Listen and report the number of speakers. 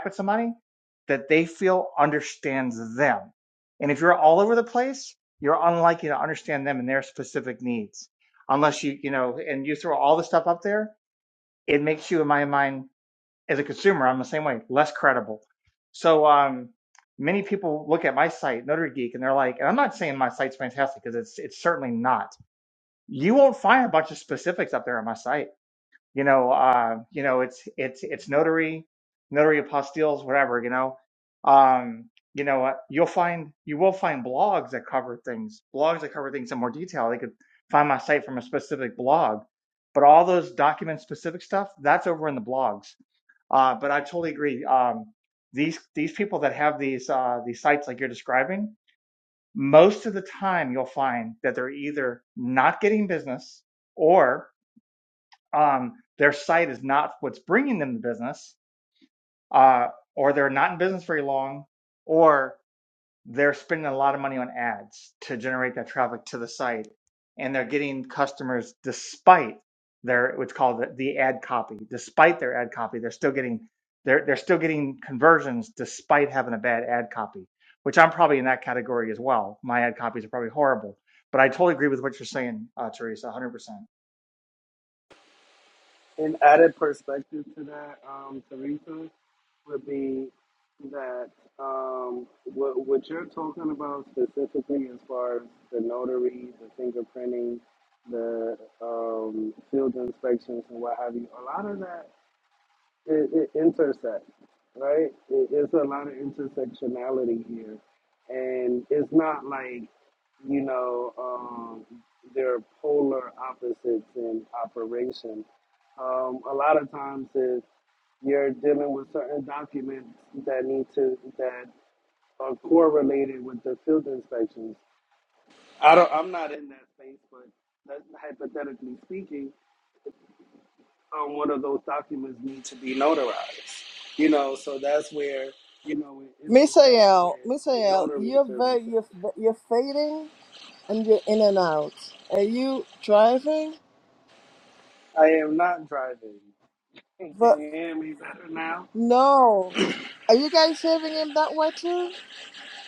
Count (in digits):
3